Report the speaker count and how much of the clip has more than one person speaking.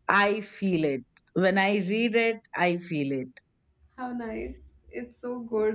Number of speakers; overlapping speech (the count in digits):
2, no overlap